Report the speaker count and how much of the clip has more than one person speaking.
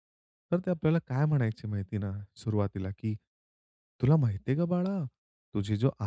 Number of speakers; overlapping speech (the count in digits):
1, no overlap